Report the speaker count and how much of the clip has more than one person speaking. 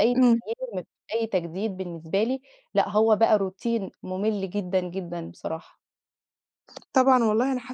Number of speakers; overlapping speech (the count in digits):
2, about 3%